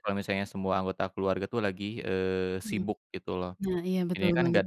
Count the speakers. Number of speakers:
2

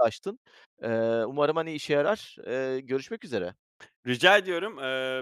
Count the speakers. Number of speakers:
2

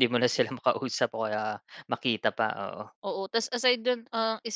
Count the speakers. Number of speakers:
2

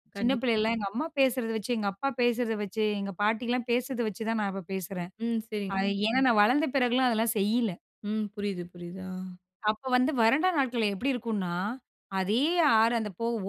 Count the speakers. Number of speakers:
2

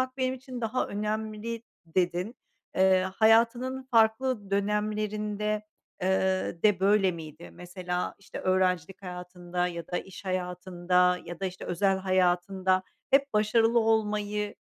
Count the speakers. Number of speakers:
1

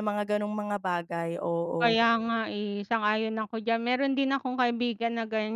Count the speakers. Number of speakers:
2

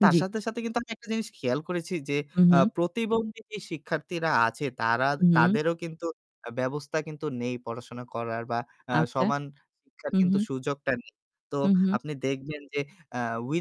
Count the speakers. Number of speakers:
2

